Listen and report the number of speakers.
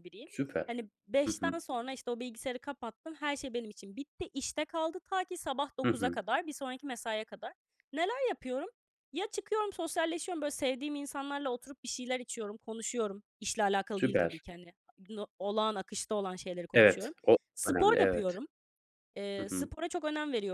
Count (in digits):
2